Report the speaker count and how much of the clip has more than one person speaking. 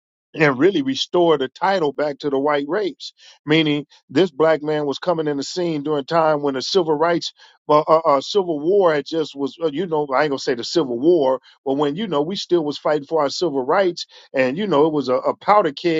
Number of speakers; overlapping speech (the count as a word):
one, no overlap